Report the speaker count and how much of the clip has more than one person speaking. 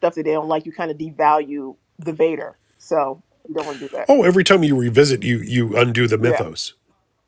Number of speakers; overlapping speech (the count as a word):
two, about 3%